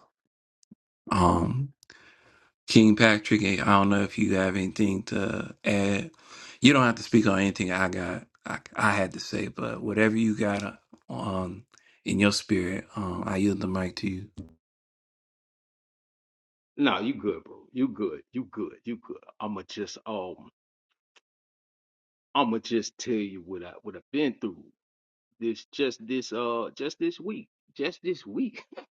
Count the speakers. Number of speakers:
2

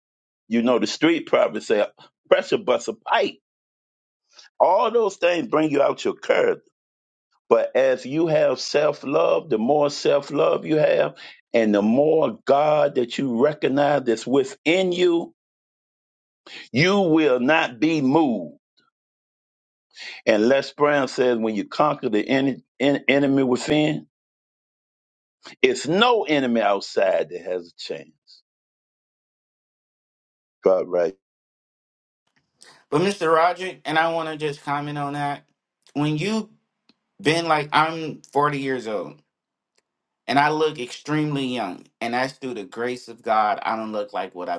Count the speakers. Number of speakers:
2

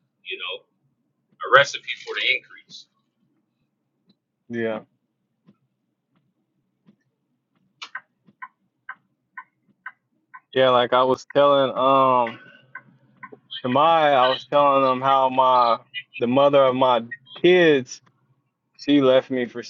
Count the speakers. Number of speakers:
2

